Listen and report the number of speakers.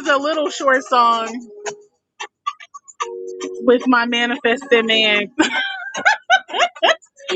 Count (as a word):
one